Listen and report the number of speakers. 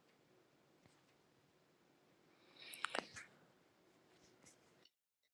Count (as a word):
zero